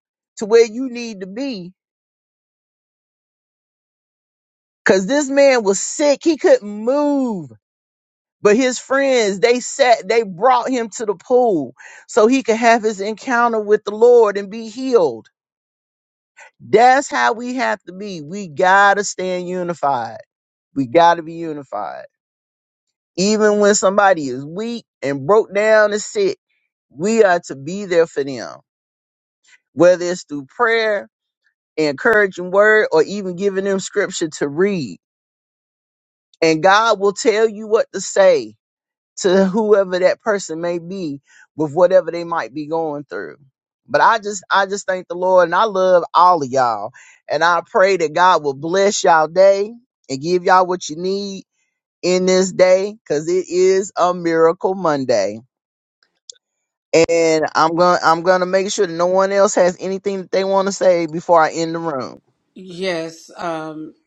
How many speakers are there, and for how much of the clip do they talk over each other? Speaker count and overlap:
2, no overlap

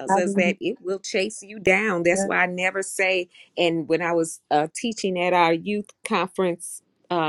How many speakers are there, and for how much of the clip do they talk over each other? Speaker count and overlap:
1, no overlap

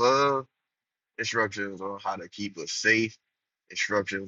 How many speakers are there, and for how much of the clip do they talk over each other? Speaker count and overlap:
1, no overlap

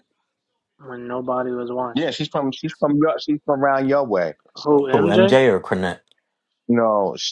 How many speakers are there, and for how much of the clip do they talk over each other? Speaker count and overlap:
3, about 8%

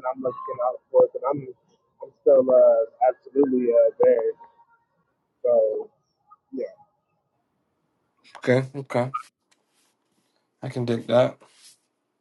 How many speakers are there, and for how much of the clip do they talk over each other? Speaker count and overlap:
2, no overlap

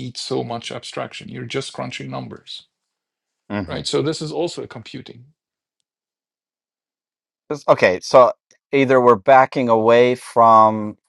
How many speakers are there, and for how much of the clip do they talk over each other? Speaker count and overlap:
2, about 1%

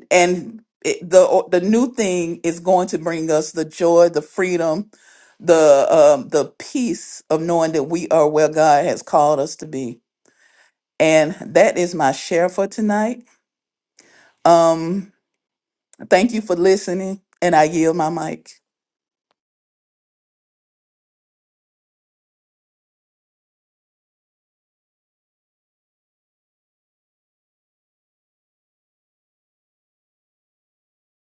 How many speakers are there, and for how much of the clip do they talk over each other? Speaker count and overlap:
1, no overlap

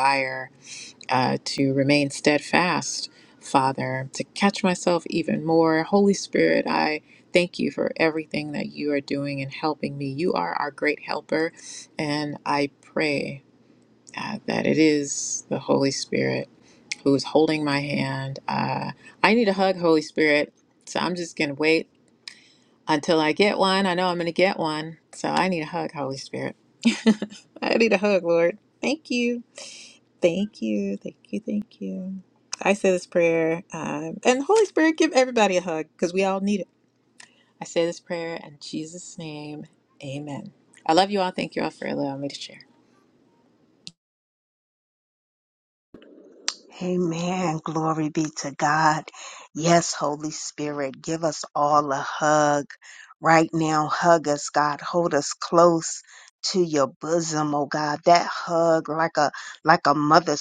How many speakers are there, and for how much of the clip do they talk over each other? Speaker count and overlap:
2, no overlap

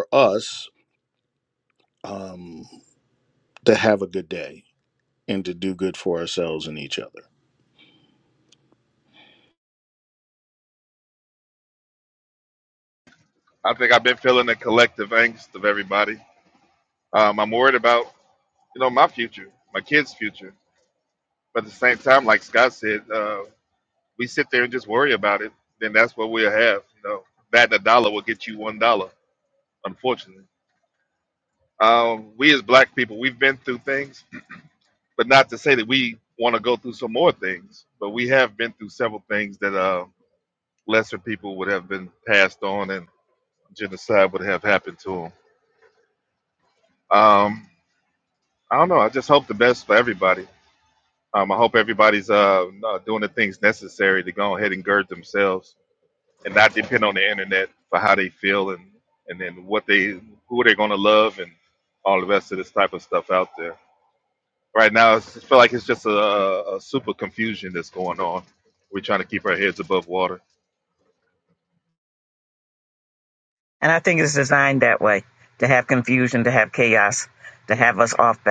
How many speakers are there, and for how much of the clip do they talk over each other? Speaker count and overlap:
3, no overlap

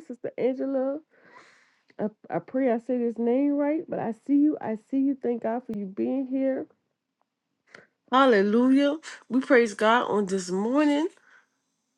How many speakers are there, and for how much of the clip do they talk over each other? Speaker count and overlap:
1, no overlap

